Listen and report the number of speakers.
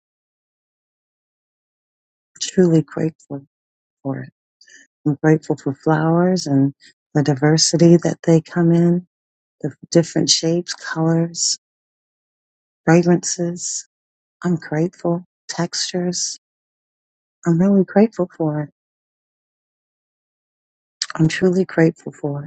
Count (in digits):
1